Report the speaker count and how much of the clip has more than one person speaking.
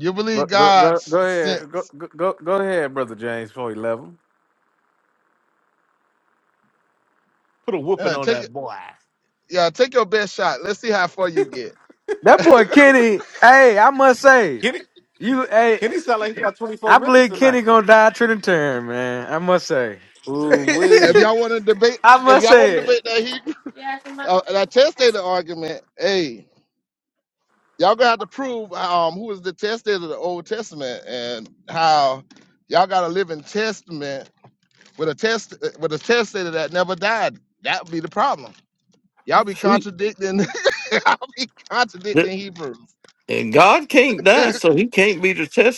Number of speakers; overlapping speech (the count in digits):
4, about 8%